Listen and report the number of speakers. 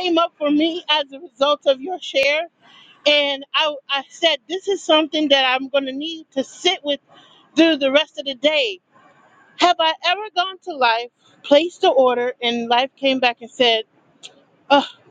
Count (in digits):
1